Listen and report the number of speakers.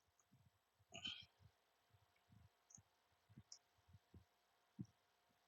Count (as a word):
zero